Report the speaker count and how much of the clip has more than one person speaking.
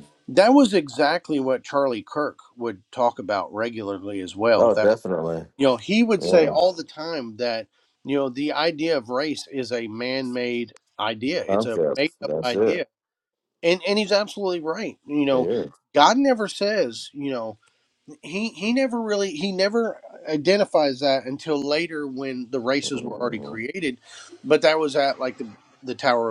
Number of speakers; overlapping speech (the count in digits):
2, about 11%